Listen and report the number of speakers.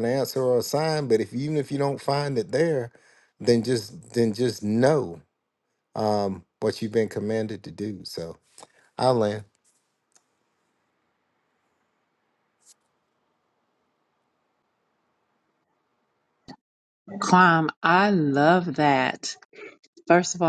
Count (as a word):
two